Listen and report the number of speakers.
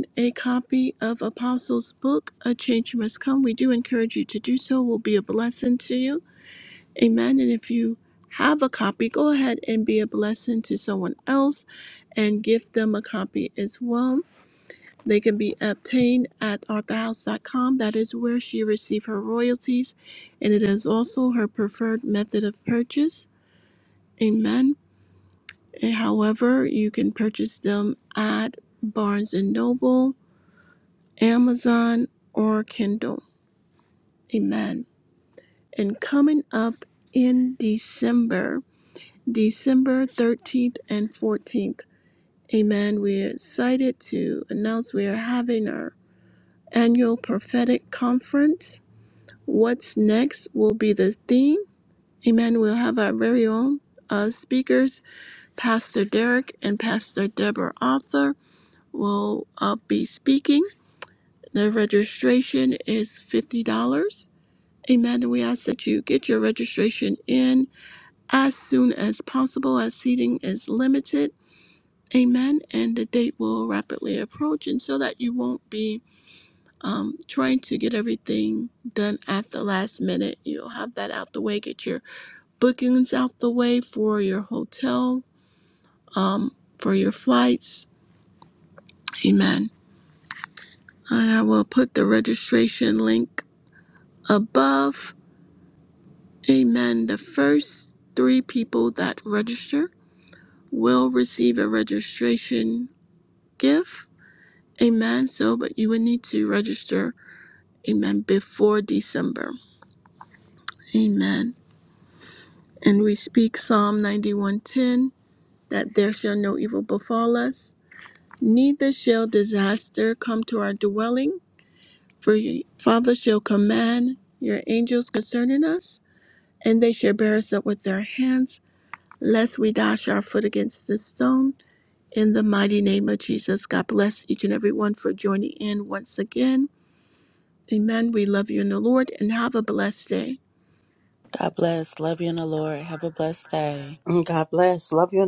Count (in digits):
3